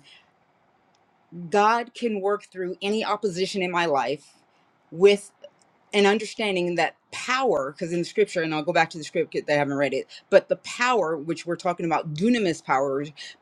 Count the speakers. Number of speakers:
one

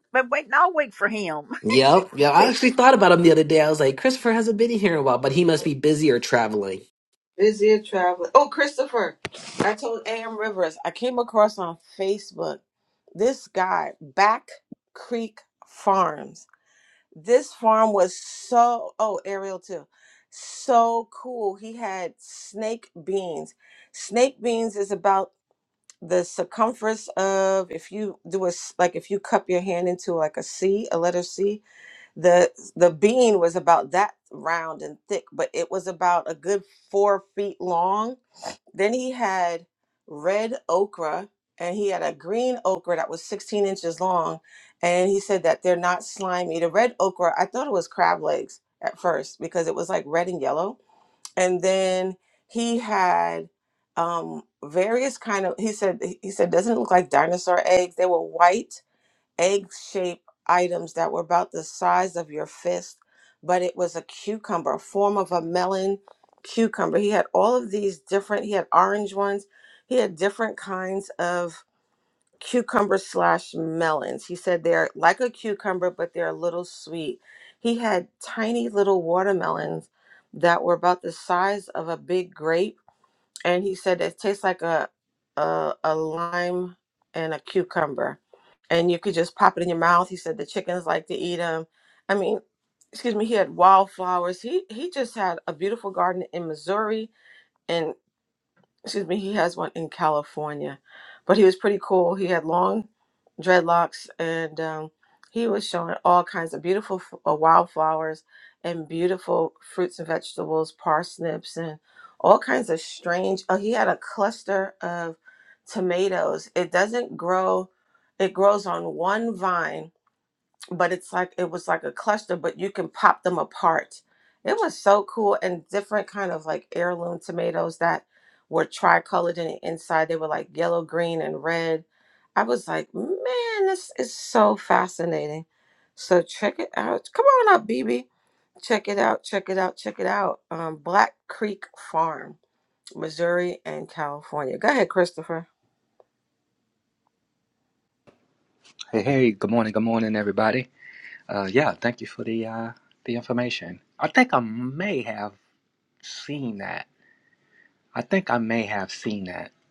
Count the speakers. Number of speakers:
four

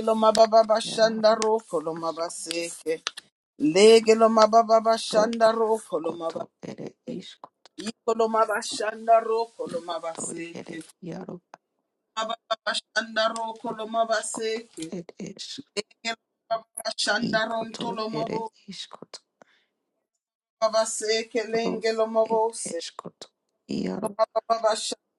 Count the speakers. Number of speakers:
two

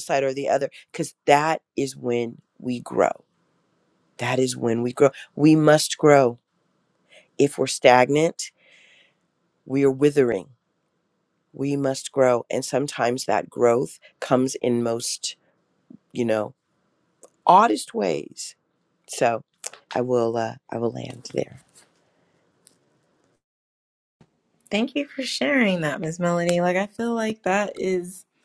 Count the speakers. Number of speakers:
two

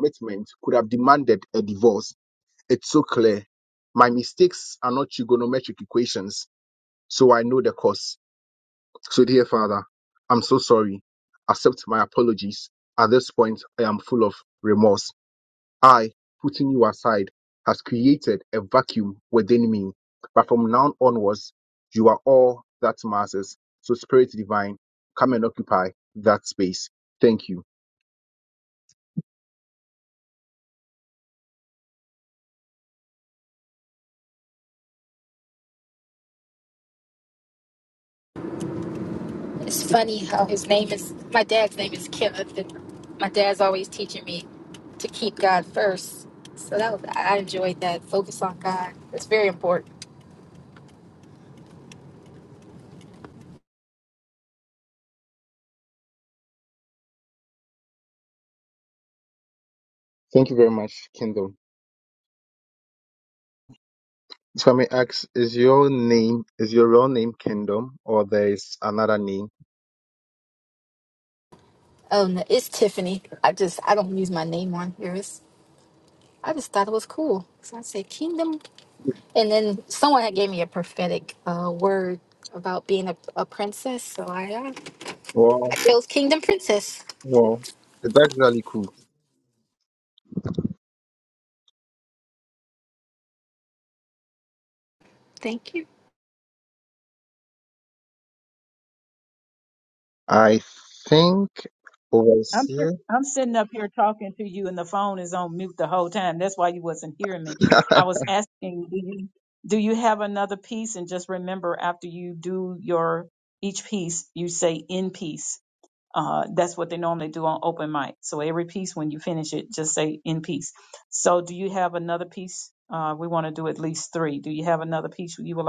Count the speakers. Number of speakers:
three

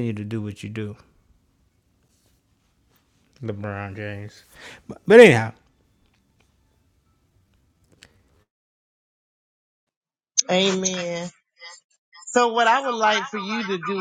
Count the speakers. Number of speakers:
two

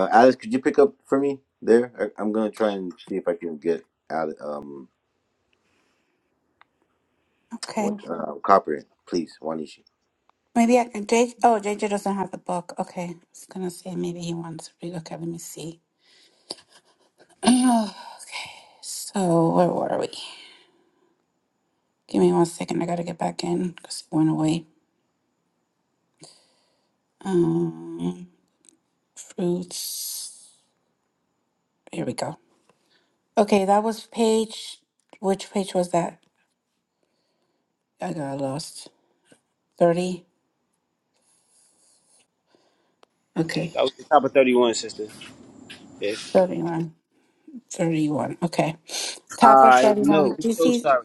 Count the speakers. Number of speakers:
three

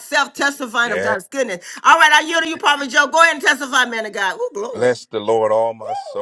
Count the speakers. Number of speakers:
two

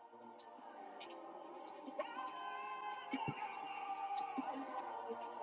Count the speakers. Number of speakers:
zero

